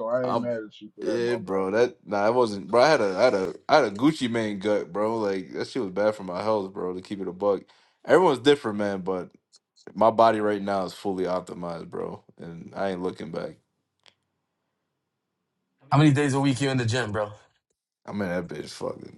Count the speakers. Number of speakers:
3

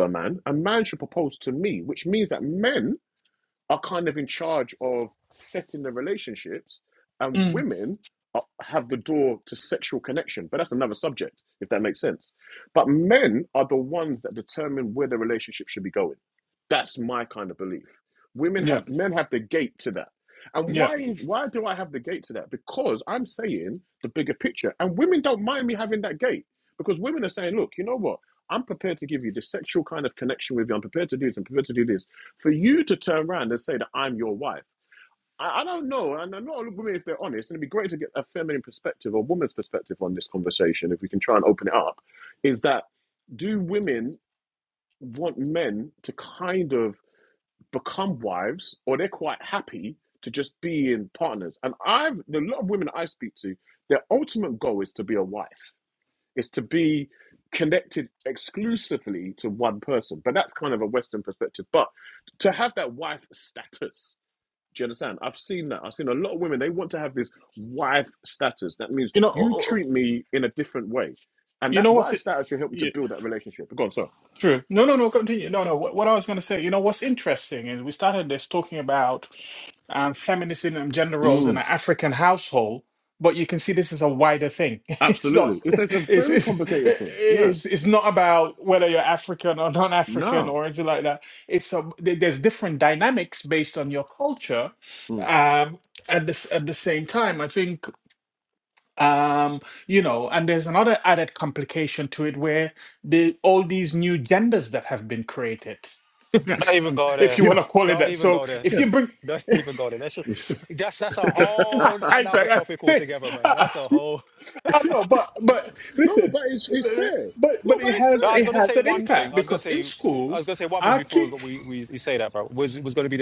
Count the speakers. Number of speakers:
3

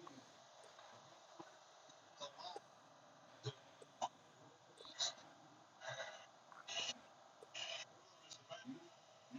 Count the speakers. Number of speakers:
0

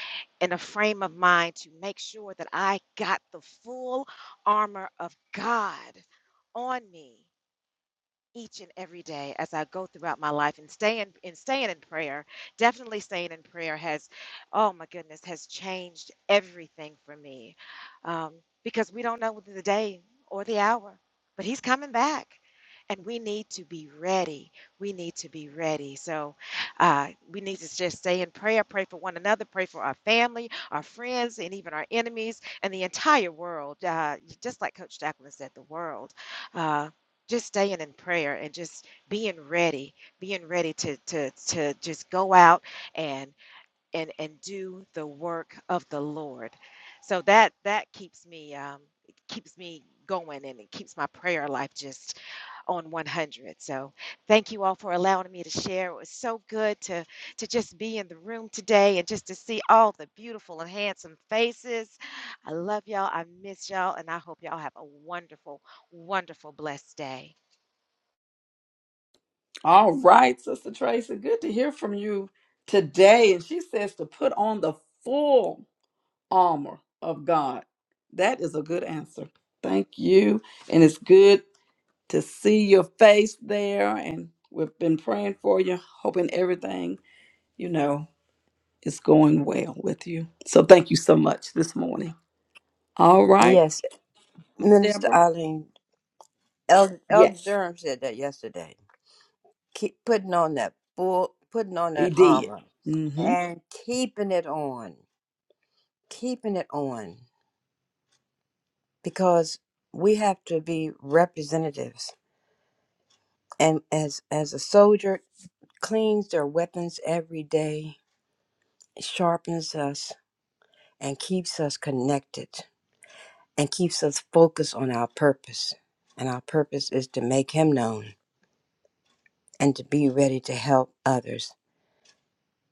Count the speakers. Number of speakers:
3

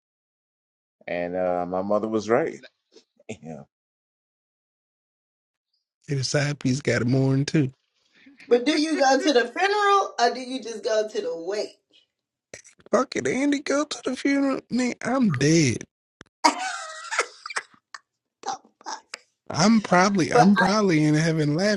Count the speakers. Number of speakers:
3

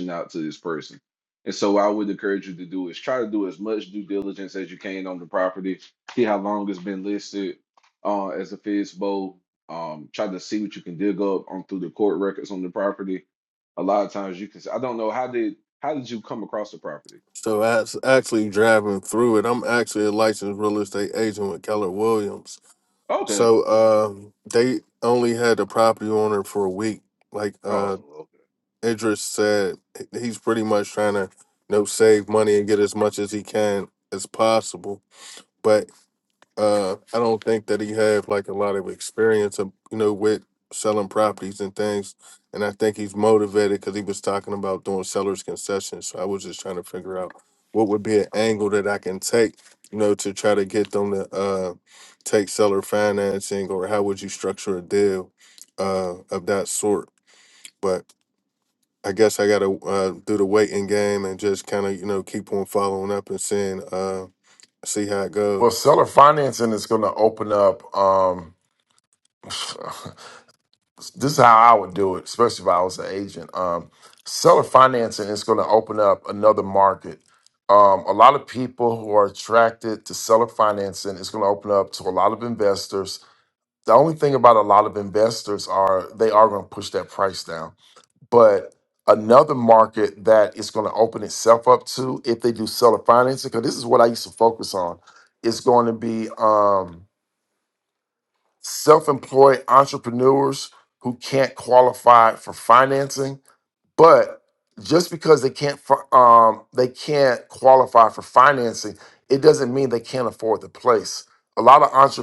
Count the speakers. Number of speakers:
3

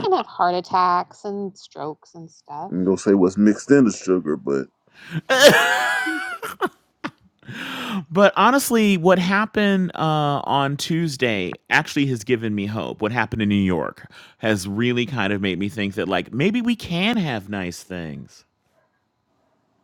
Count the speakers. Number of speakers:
3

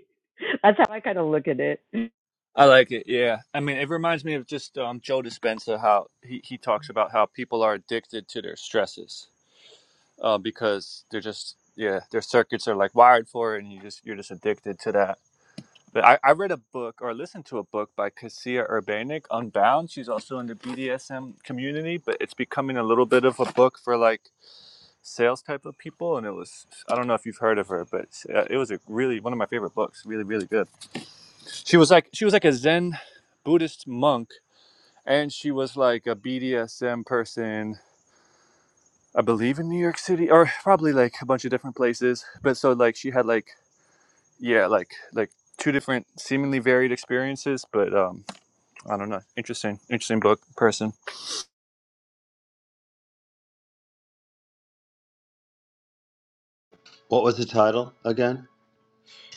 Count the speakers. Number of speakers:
3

